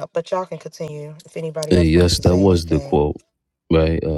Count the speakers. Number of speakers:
2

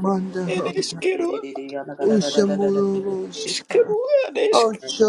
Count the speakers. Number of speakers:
3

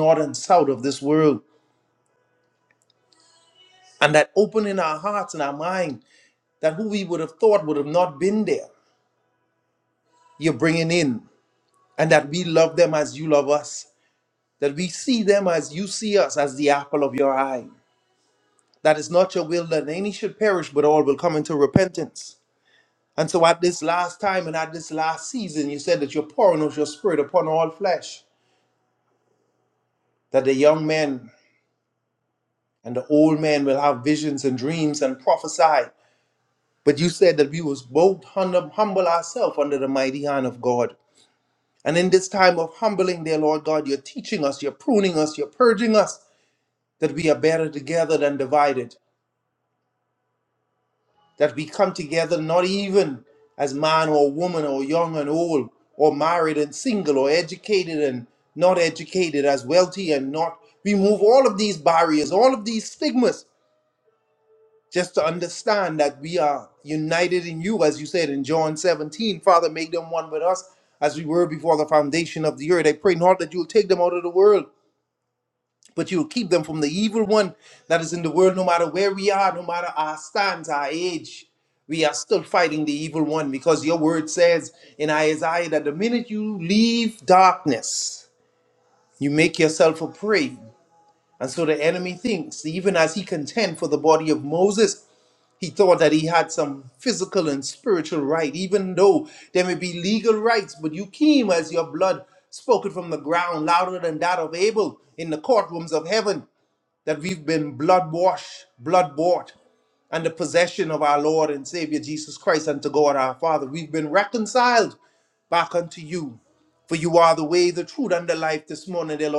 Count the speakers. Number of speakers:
1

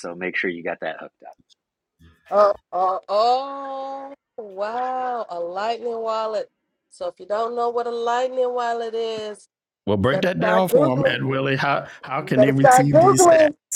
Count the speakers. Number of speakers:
3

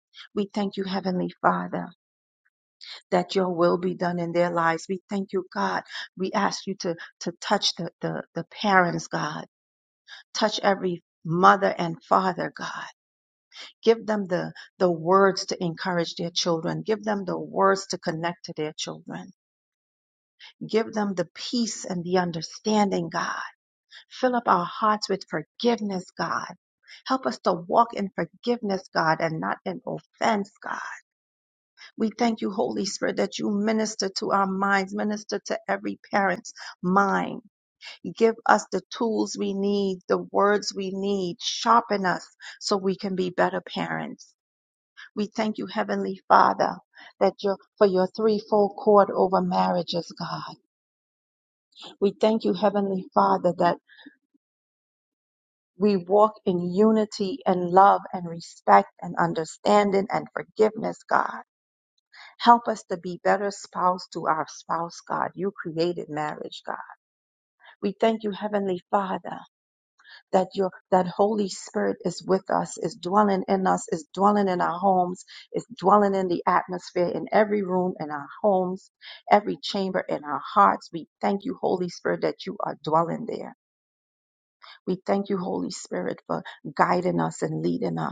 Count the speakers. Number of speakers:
1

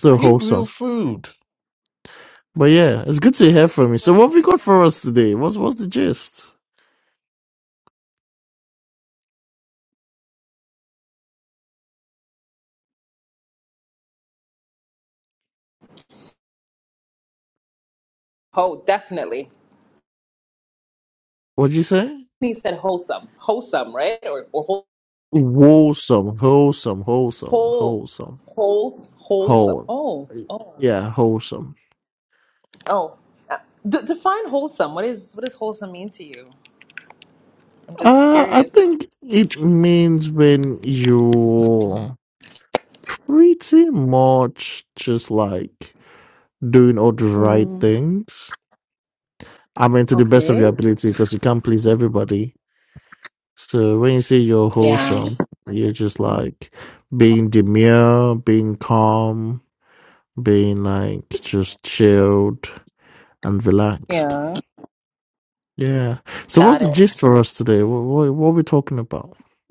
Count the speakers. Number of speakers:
3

